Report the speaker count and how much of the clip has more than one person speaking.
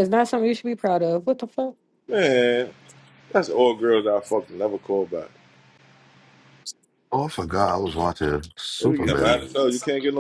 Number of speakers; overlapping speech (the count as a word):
three, about 6%